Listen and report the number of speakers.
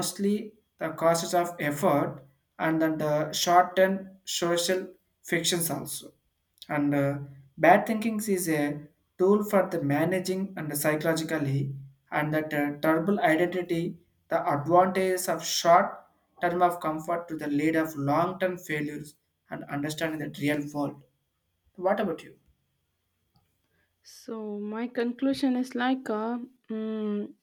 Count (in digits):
2